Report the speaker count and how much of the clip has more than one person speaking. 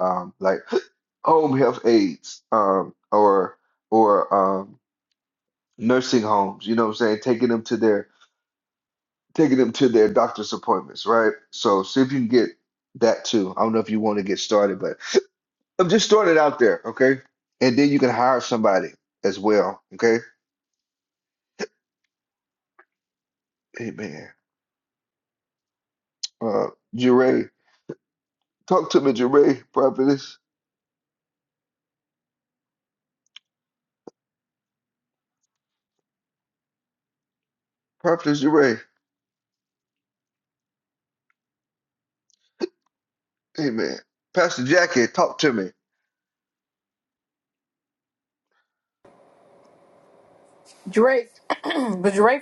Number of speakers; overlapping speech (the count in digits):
2, no overlap